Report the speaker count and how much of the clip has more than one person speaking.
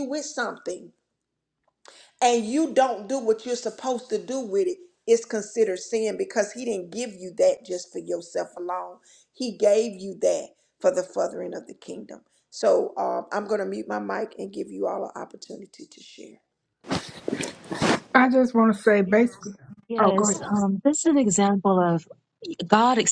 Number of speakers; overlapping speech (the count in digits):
3, about 2%